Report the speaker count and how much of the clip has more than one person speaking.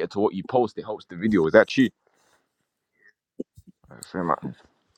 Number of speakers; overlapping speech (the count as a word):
one, no overlap